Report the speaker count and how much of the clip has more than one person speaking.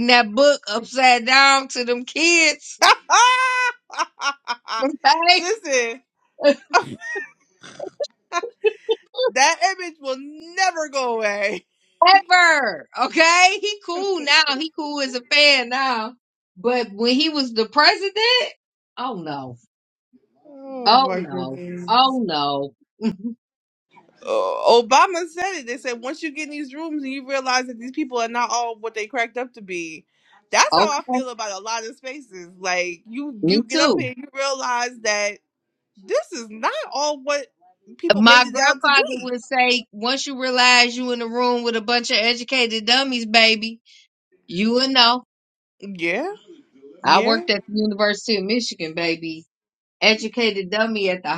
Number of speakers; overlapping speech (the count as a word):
two, about 7%